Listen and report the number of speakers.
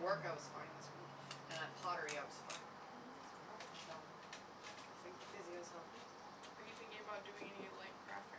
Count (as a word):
two